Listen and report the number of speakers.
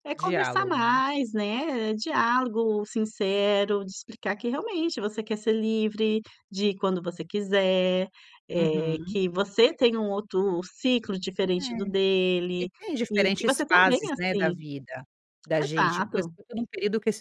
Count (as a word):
two